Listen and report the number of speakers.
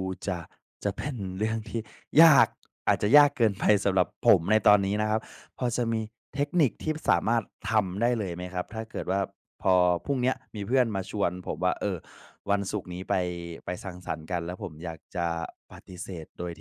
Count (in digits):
1